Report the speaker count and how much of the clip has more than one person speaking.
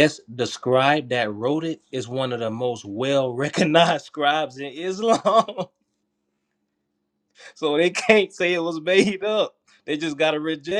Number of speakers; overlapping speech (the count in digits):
1, no overlap